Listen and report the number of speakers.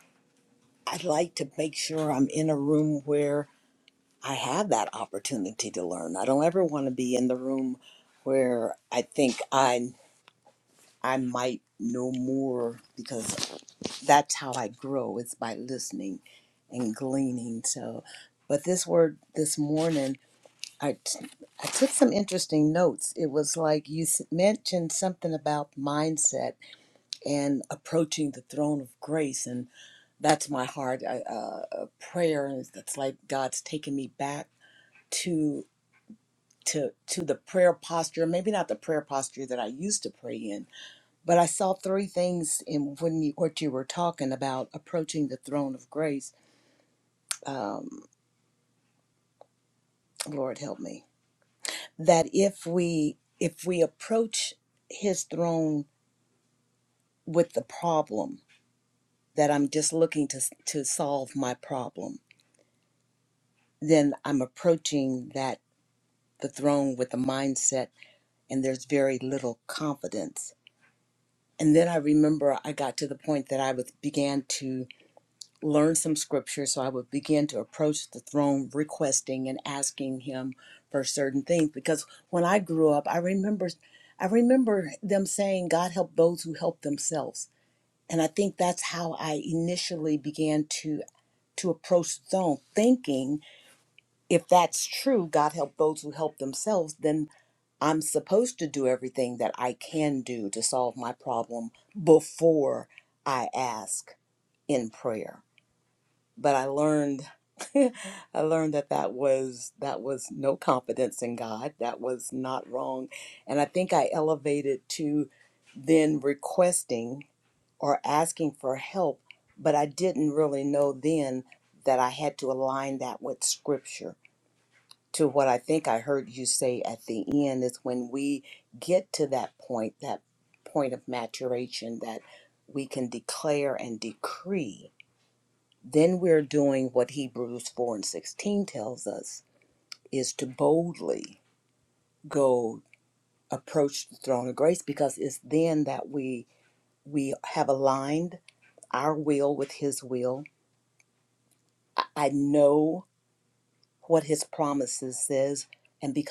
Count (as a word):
one